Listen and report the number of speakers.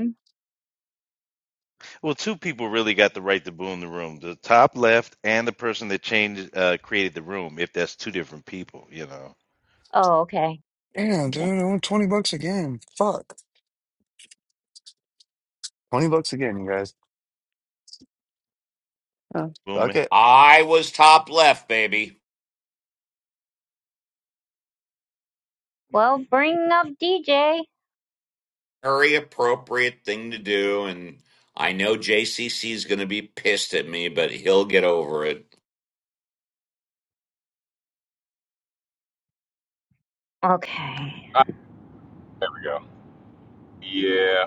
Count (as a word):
five